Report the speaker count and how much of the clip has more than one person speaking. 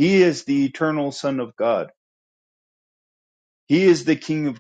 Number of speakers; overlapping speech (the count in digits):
1, no overlap